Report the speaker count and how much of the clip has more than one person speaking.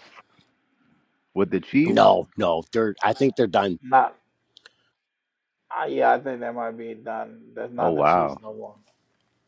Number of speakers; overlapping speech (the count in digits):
3, about 8%